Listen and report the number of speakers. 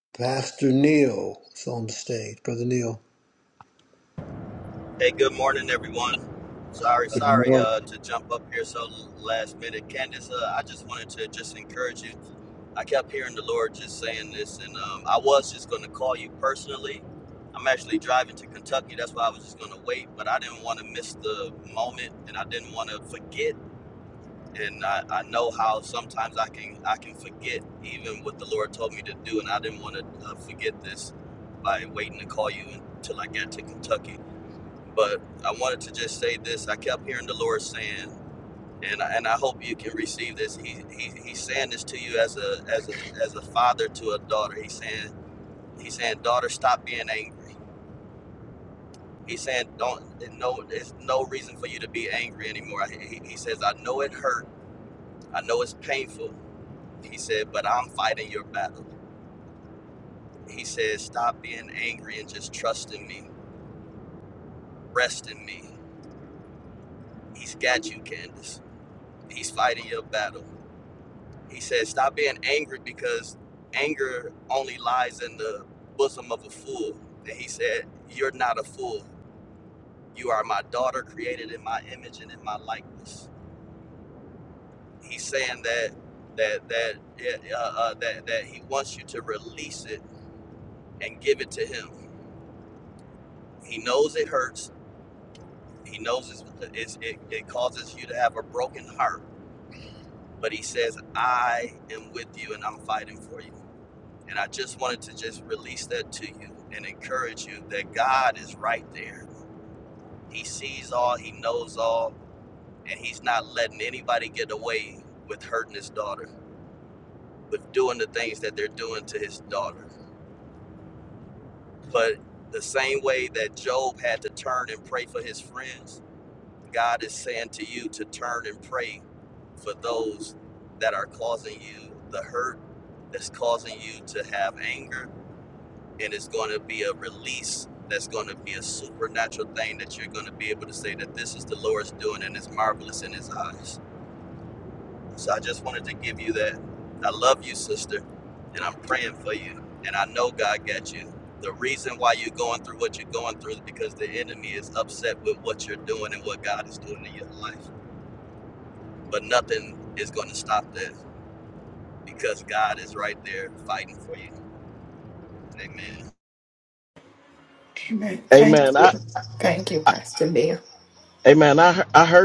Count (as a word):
four